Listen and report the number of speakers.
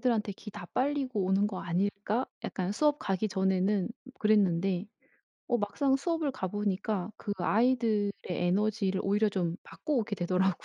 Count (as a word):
one